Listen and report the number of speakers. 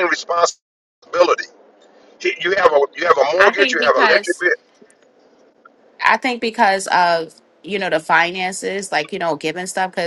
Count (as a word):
two